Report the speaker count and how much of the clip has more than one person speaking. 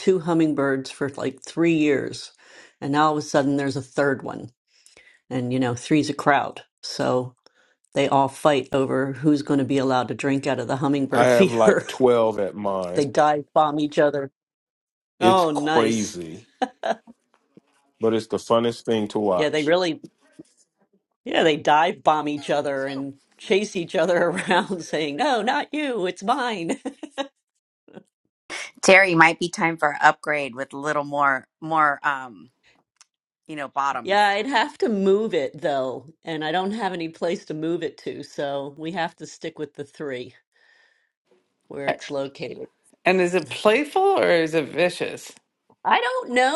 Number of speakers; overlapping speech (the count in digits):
4, about 5%